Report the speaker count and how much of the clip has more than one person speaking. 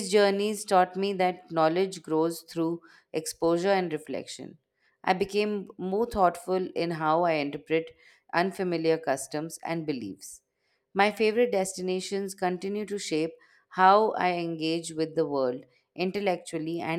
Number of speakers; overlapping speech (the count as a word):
one, no overlap